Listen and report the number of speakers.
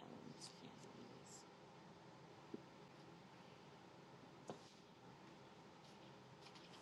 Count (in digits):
0